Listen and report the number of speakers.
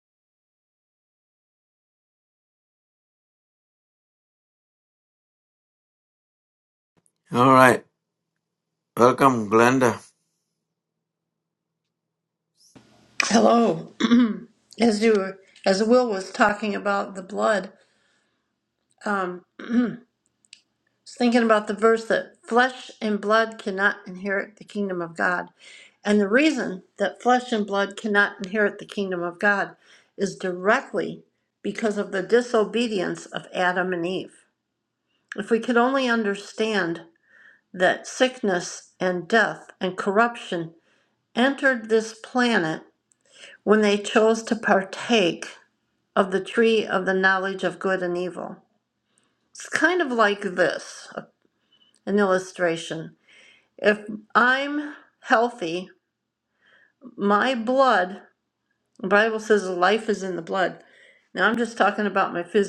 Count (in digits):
2